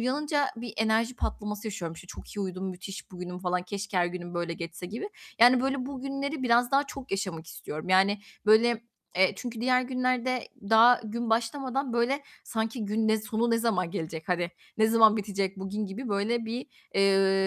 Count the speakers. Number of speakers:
1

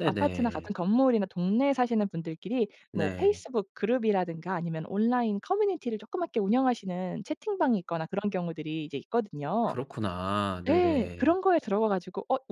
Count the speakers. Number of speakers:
2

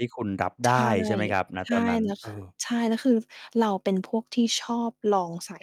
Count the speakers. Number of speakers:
2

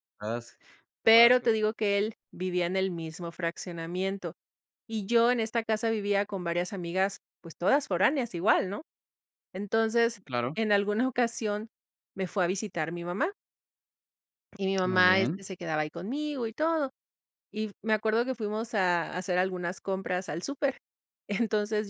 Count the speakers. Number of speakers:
2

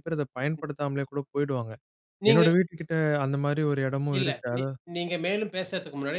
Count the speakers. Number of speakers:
2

